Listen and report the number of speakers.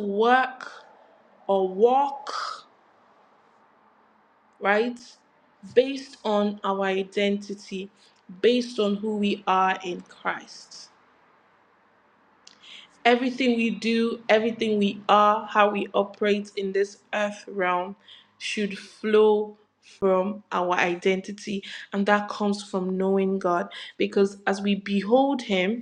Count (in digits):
1